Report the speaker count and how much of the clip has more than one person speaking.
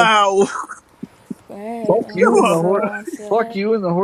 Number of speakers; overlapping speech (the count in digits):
3, about 33%